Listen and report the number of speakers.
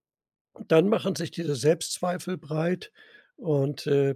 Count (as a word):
one